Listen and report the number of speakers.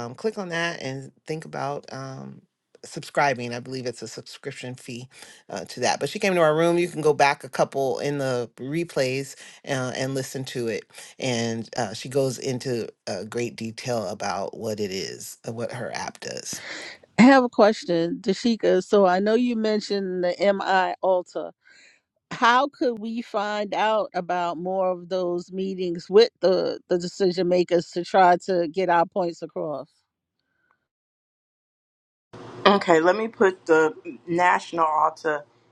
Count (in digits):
3